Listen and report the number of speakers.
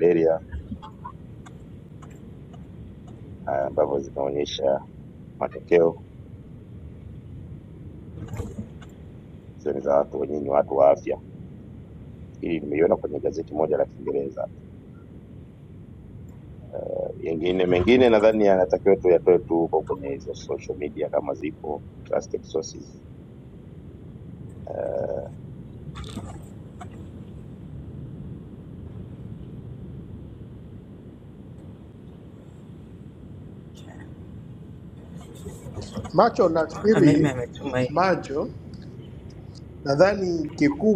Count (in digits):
3